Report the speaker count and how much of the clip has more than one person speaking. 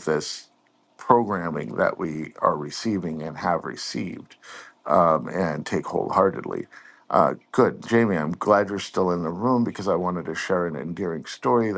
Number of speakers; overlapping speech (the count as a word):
one, no overlap